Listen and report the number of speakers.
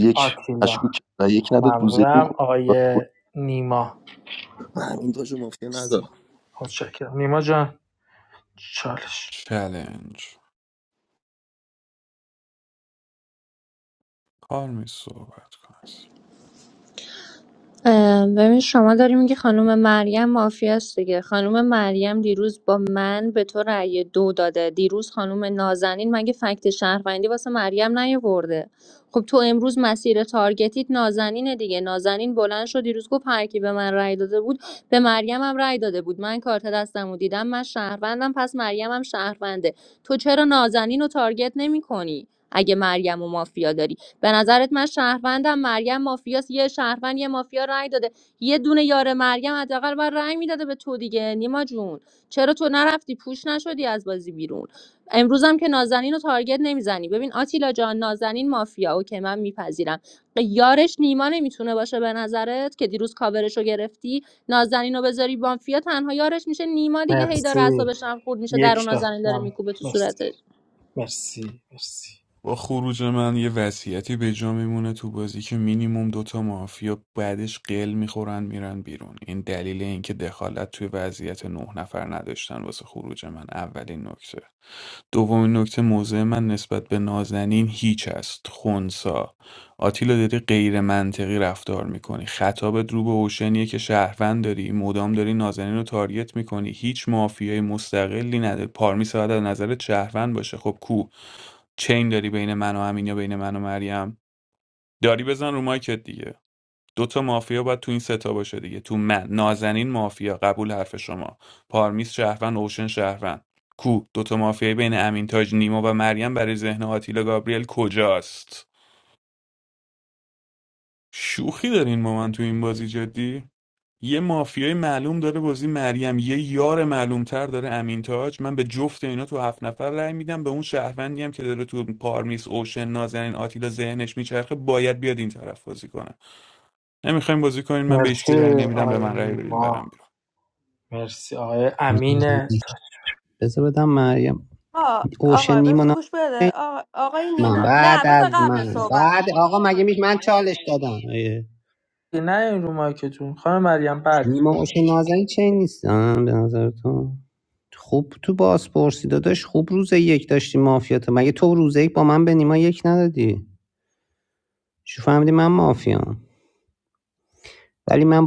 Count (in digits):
6